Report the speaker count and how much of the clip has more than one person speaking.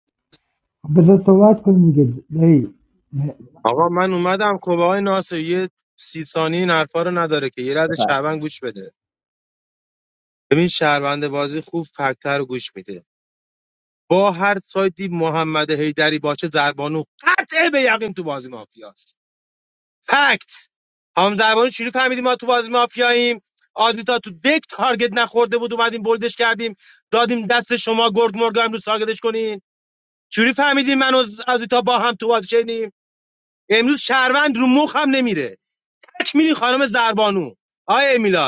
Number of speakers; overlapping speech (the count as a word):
two, no overlap